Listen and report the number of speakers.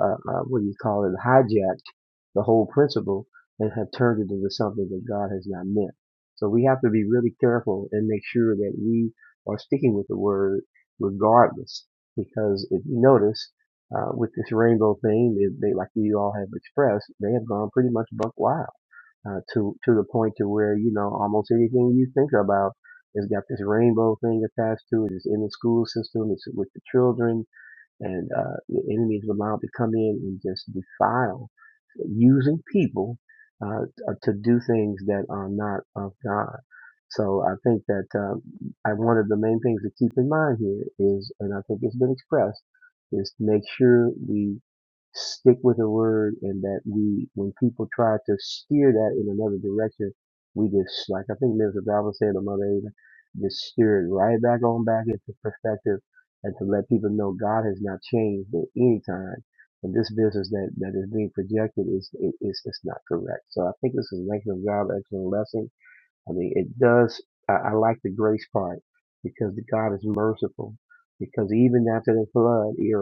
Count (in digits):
1